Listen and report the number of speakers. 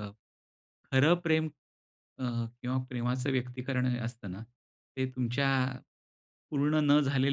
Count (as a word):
one